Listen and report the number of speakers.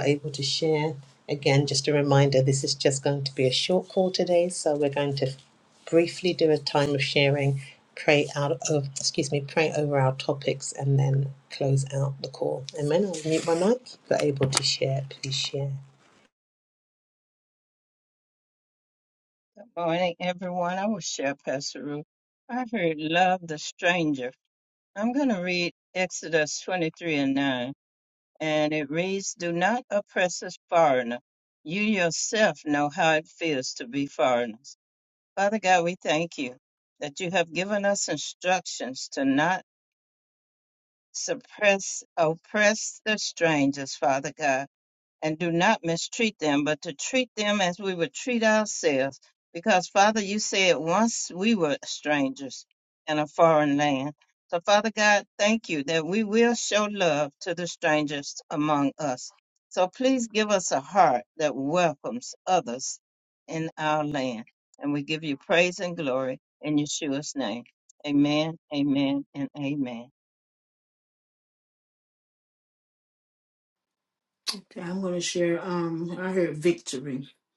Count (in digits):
3